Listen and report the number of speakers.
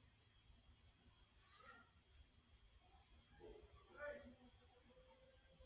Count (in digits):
0